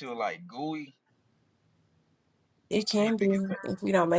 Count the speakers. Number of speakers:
2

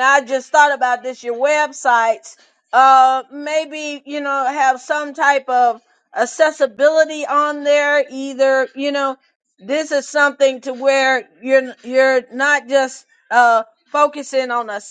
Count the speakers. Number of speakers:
1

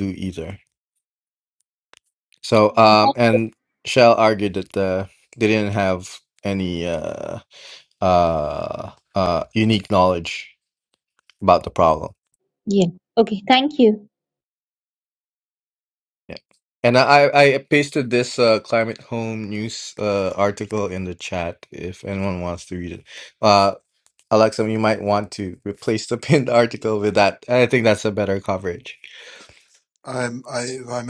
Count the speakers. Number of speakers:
3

